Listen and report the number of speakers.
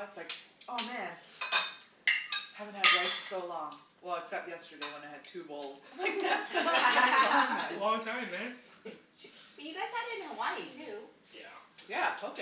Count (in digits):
3